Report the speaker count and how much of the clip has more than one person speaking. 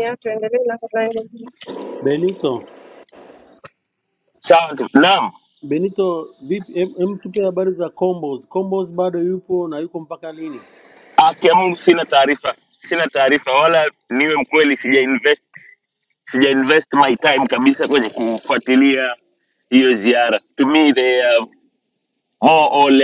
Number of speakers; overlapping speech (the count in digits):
3, about 1%